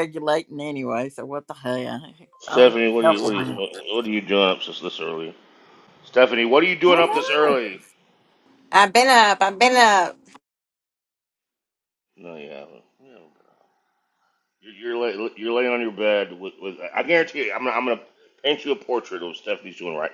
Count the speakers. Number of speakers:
3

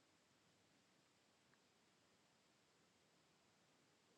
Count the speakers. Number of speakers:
0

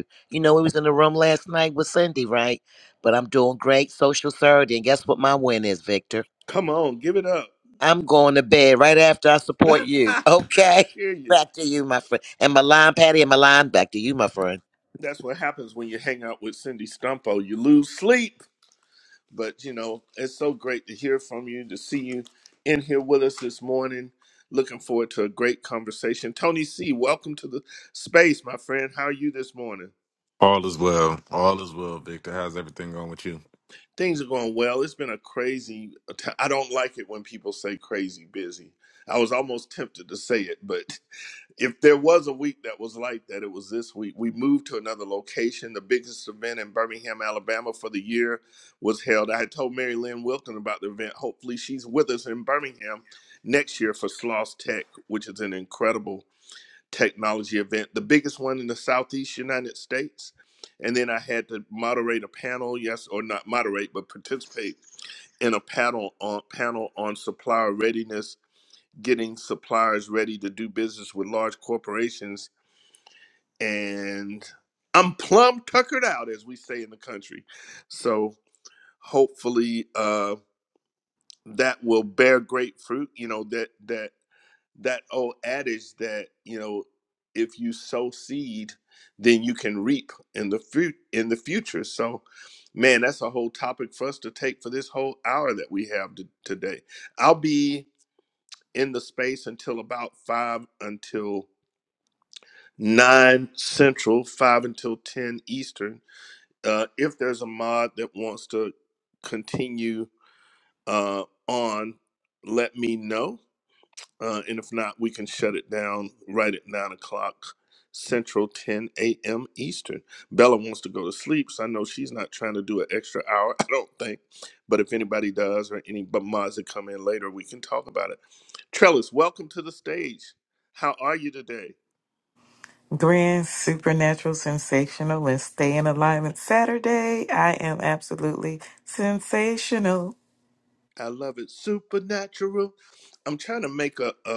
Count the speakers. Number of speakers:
4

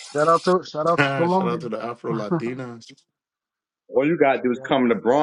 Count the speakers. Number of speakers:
3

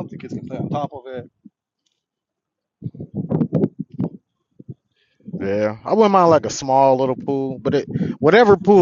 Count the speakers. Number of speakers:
2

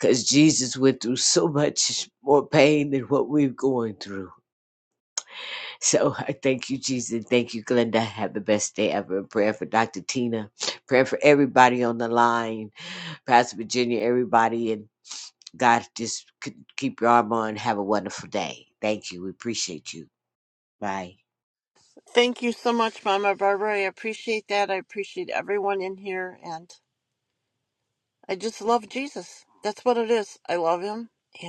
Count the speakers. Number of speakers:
2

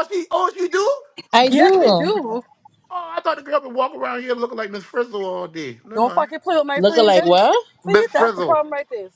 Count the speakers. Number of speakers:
3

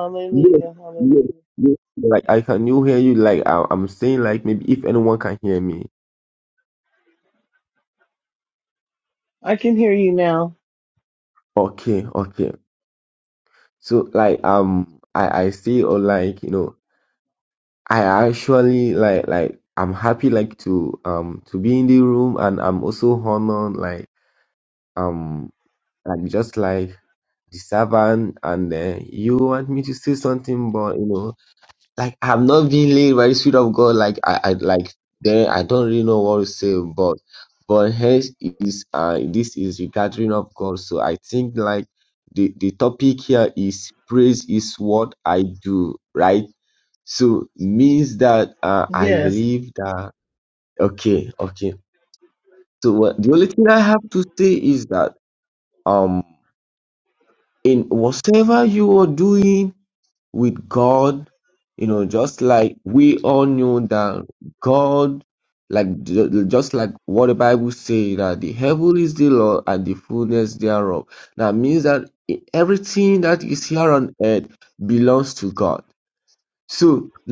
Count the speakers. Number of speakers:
2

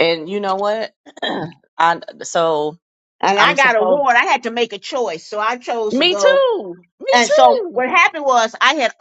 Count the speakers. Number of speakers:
2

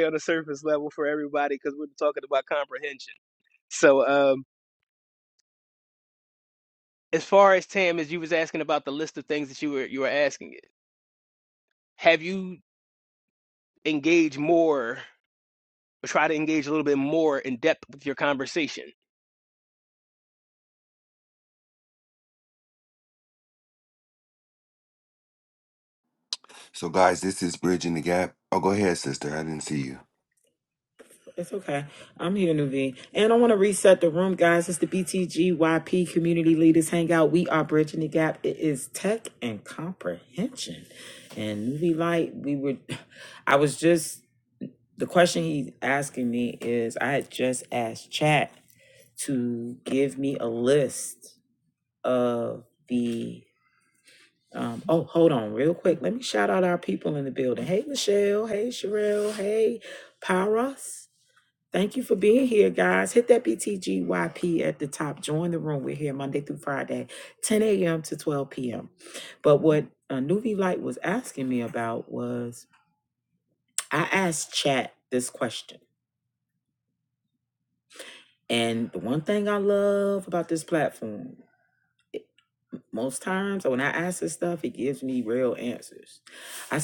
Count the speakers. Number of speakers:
3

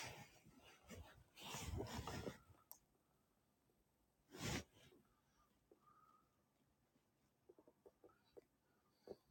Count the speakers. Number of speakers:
0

